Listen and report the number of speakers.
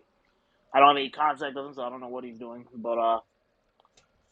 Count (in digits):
1